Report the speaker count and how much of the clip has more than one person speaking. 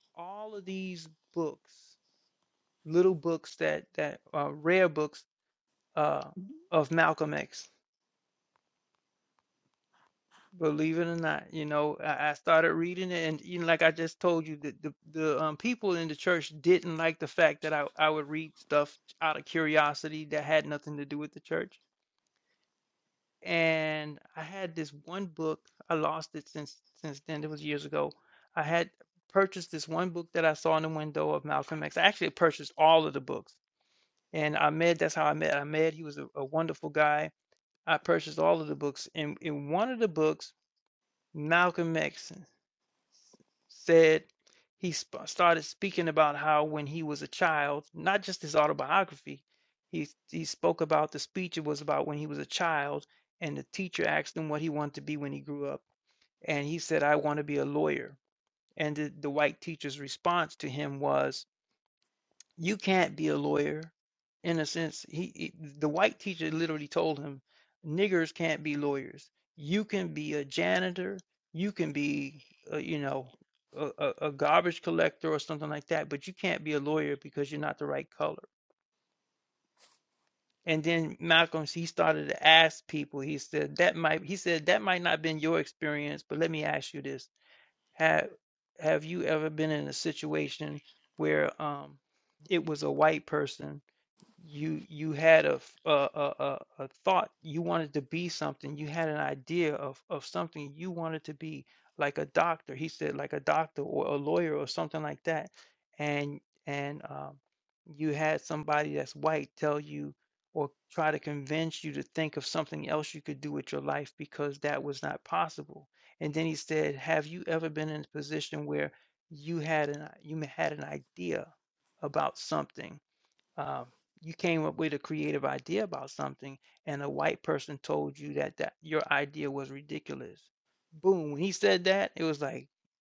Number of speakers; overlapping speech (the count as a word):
one, no overlap